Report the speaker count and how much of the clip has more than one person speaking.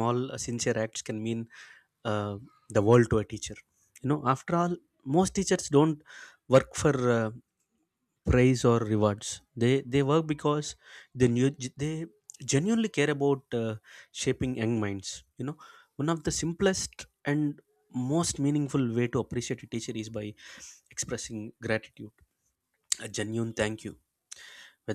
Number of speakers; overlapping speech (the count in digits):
1, no overlap